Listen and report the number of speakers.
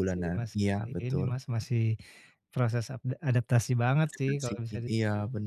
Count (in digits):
2